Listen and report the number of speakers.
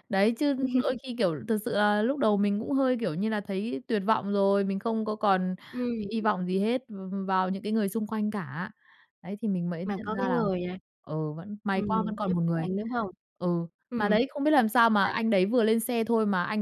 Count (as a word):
two